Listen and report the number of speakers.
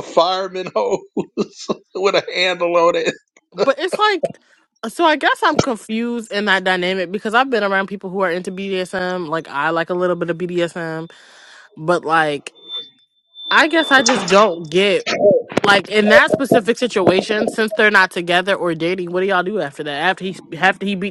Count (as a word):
two